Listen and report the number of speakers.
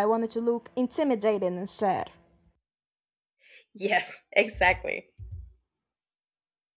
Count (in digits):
2